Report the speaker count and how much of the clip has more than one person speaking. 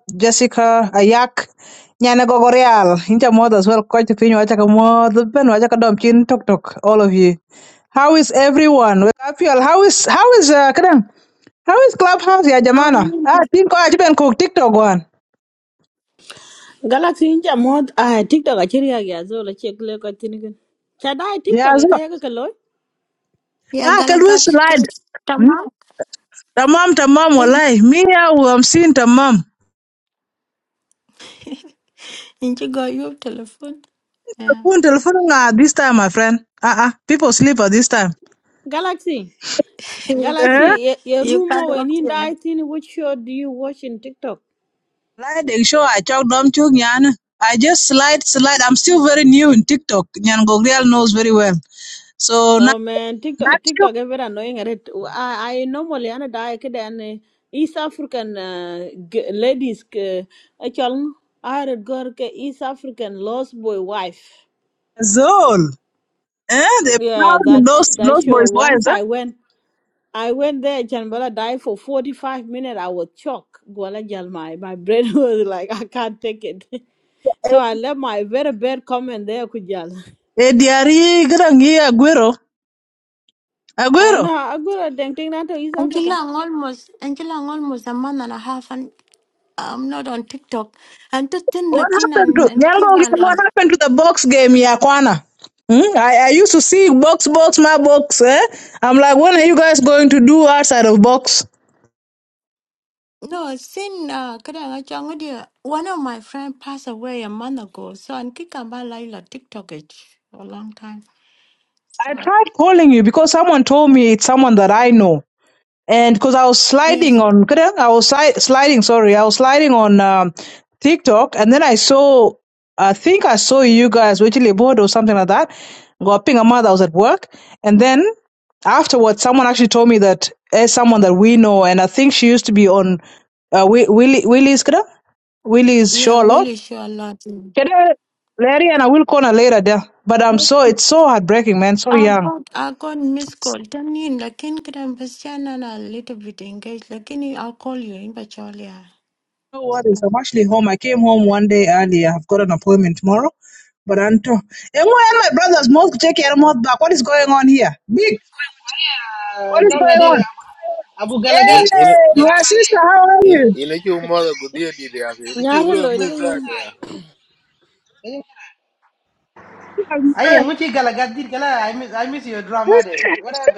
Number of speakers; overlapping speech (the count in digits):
5, about 7%